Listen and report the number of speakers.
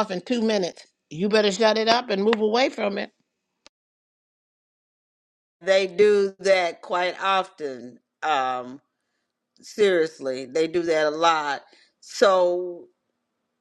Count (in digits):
2